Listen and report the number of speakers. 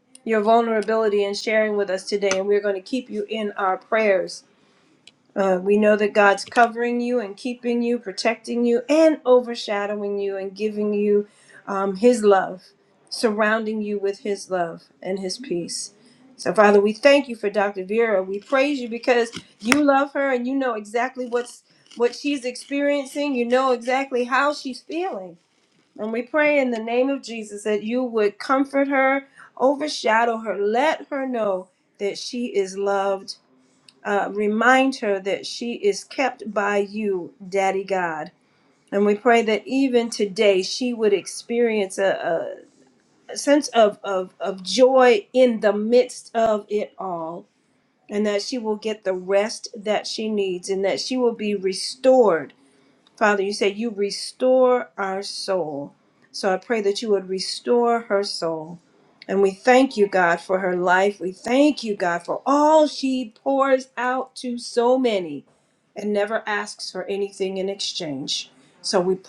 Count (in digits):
1